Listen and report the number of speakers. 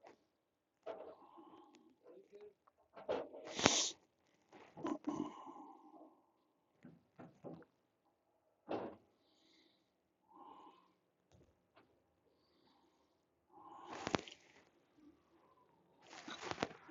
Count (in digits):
0